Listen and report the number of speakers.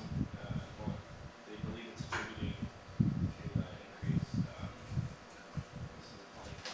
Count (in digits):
1